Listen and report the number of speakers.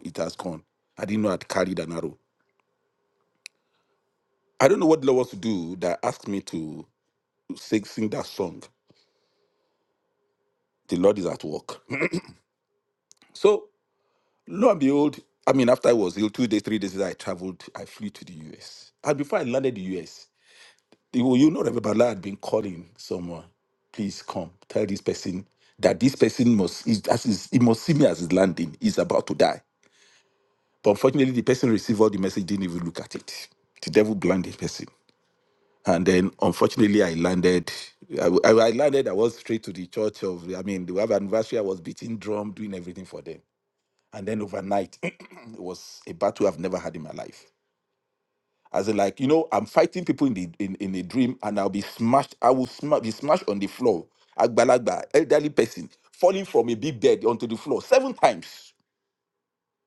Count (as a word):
one